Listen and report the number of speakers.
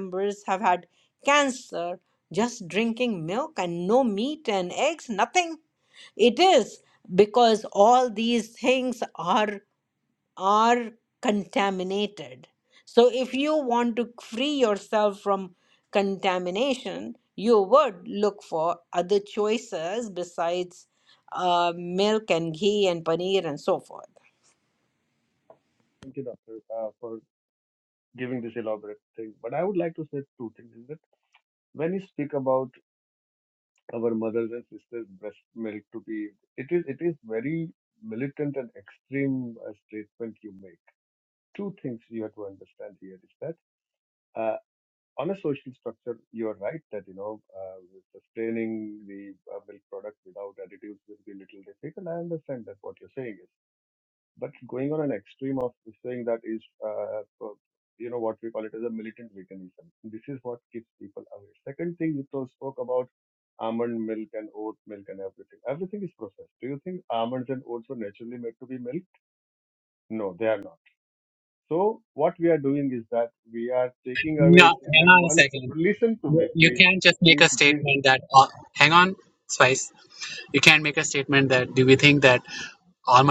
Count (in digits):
3